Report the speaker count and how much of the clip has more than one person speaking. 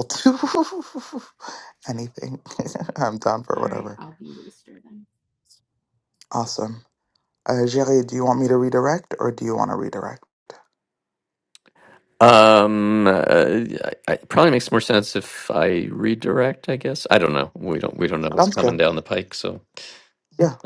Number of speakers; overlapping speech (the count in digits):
3, about 4%